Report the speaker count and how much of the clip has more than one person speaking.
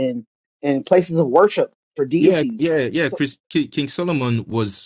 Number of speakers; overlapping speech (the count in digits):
2, about 9%